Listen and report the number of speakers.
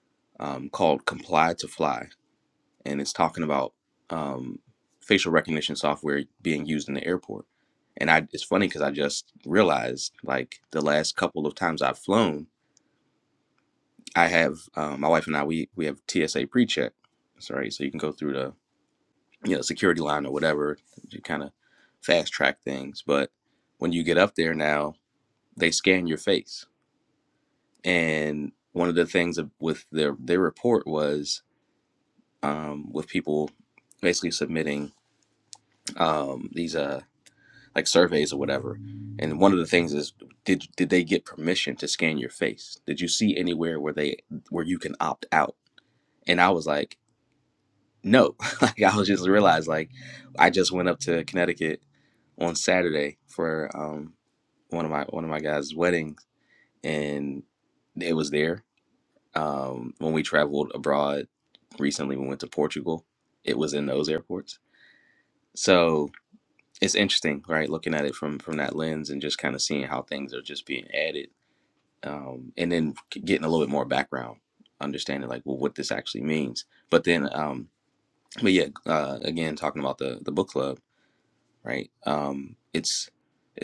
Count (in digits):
1